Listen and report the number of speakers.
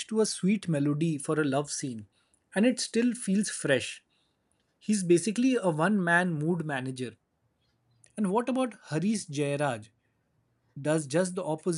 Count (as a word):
one